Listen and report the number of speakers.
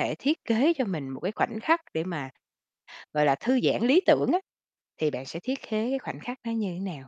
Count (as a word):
one